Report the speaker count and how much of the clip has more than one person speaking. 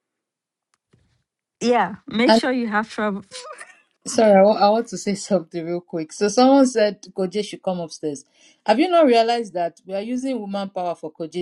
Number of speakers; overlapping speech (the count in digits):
2, no overlap